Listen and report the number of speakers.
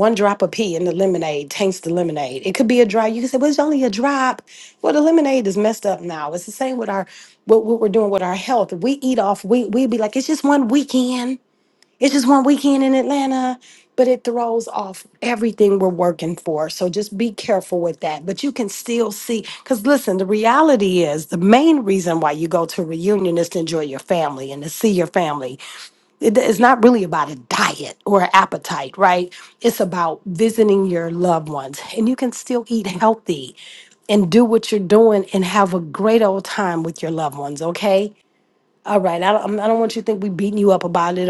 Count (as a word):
one